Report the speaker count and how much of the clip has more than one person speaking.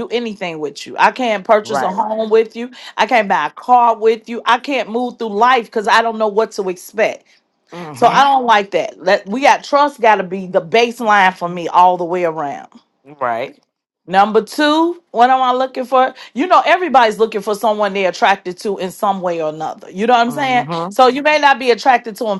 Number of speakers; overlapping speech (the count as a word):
two, about 4%